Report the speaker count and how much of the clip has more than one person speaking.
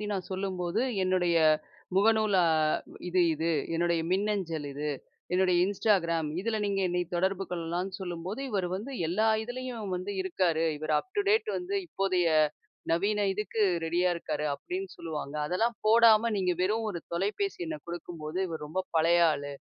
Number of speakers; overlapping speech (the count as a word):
one, no overlap